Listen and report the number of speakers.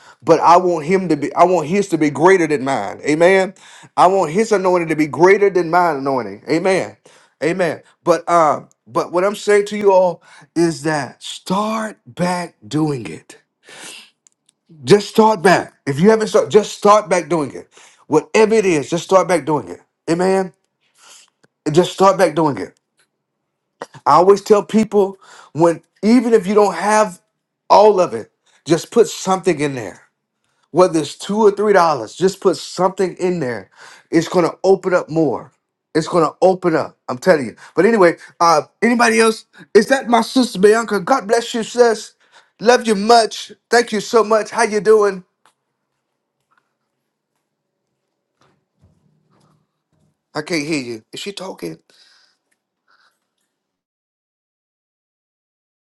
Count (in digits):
1